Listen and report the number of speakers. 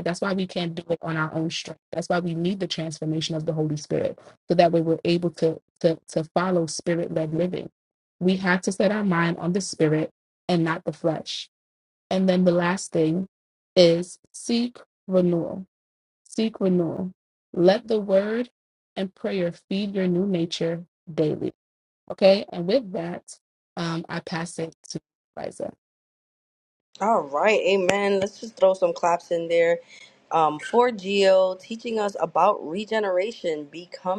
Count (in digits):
2